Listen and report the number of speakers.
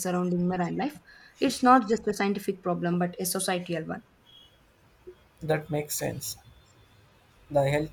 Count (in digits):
2